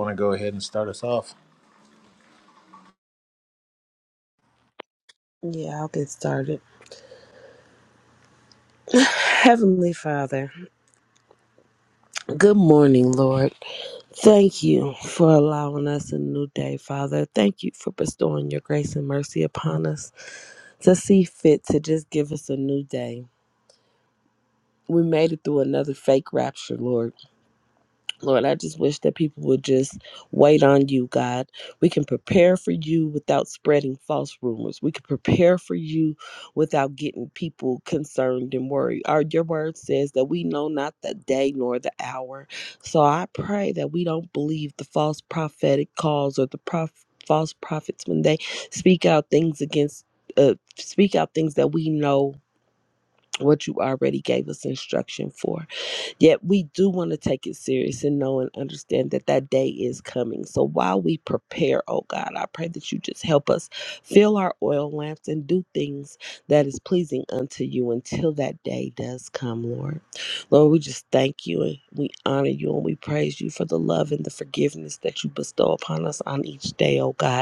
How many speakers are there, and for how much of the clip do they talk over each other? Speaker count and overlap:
two, no overlap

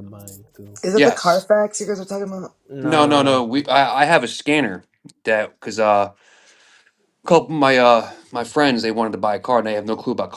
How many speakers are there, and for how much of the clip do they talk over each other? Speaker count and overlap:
three, about 9%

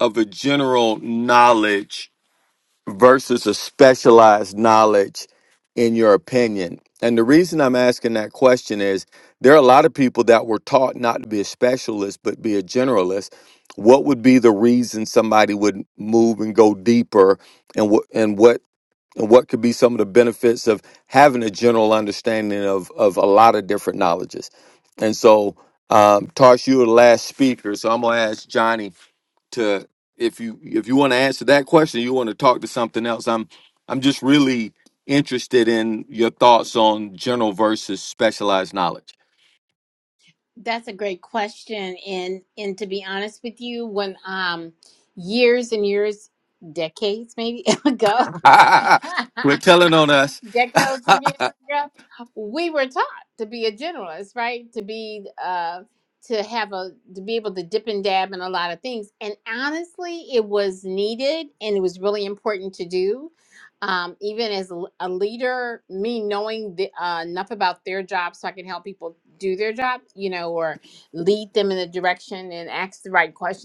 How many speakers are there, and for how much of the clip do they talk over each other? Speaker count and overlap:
two, no overlap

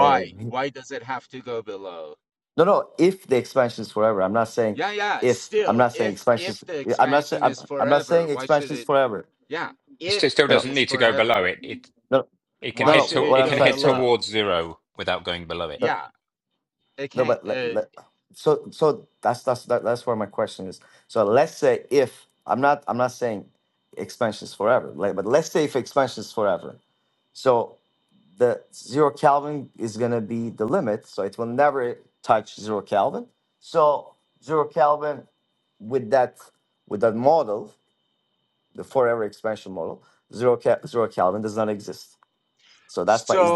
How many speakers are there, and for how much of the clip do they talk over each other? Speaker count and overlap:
three, about 18%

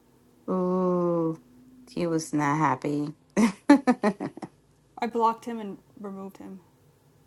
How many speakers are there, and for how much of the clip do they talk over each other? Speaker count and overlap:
two, no overlap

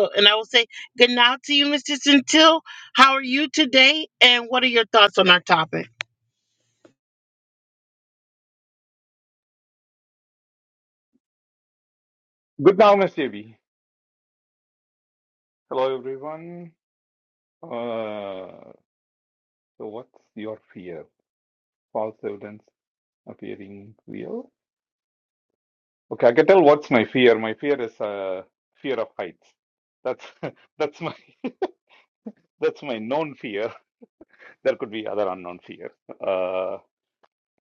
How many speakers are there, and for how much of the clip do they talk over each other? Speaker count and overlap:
two, no overlap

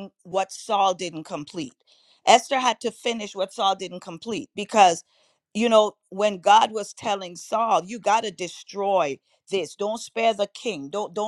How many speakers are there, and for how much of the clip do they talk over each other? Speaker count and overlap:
one, no overlap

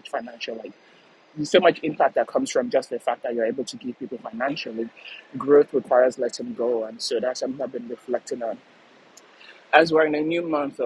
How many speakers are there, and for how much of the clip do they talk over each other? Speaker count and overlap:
one, no overlap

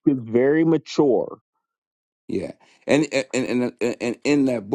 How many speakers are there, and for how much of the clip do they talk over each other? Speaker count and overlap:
two, no overlap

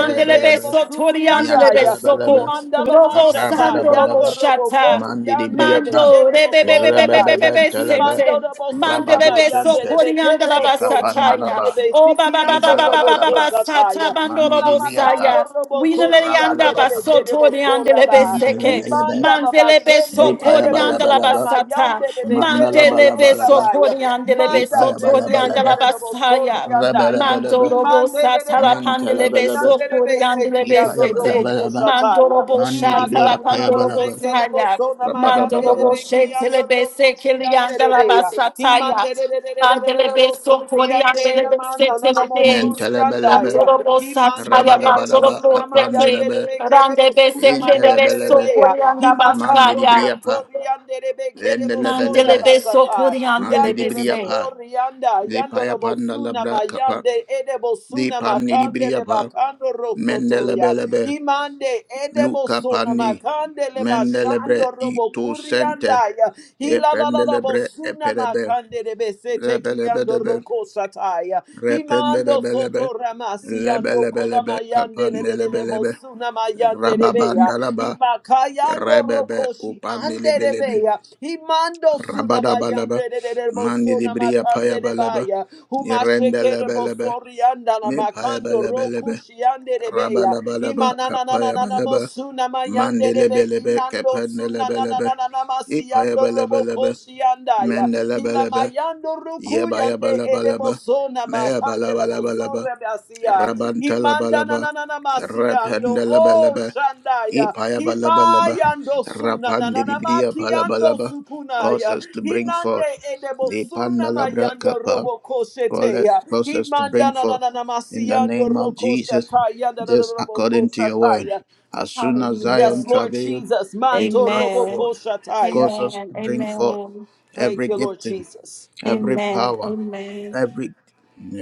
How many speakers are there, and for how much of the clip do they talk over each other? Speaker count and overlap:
three, about 77%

